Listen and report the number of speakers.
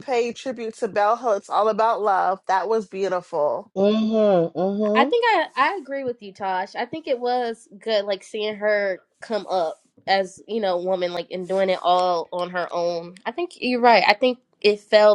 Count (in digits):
3